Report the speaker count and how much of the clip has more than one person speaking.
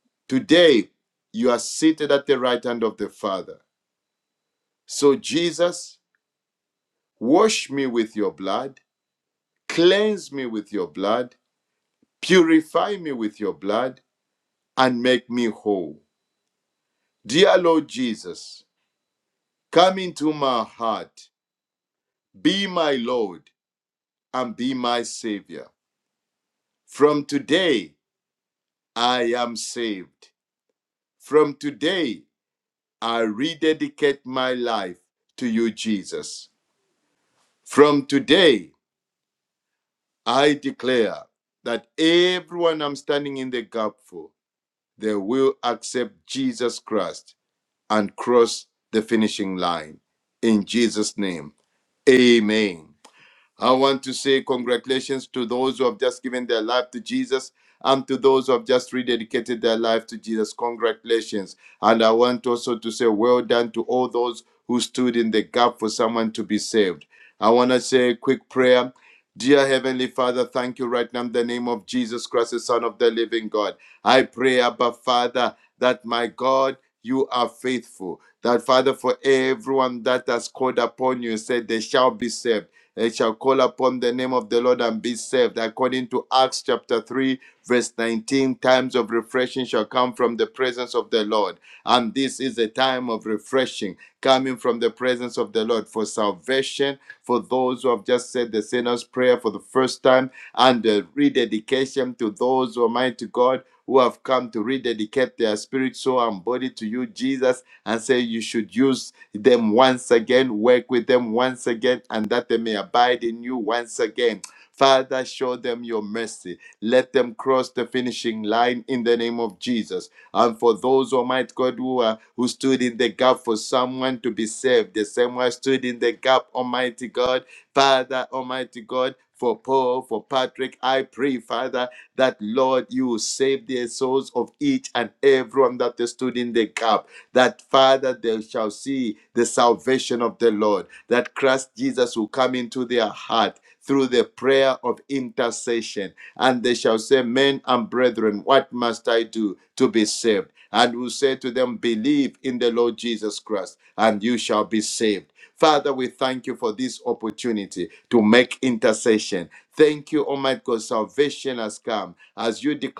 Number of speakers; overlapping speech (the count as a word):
one, no overlap